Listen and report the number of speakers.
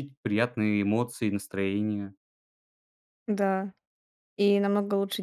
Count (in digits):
2